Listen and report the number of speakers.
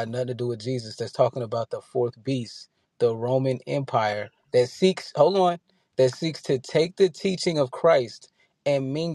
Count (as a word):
one